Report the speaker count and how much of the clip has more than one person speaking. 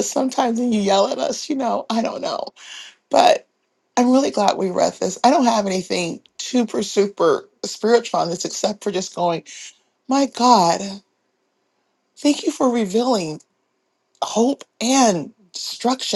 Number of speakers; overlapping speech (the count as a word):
one, no overlap